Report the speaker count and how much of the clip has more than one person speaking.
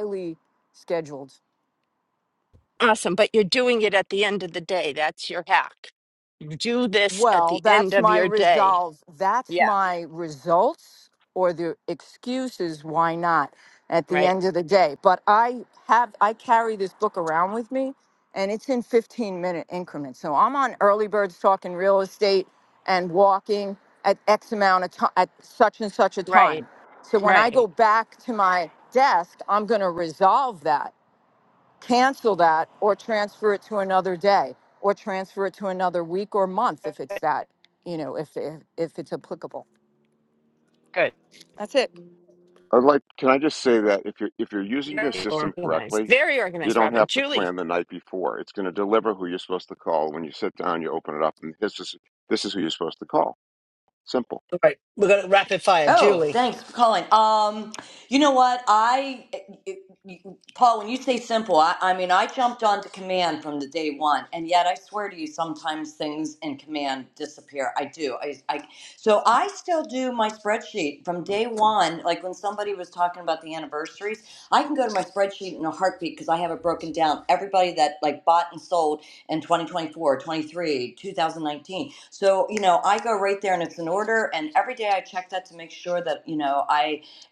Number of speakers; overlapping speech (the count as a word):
five, about 6%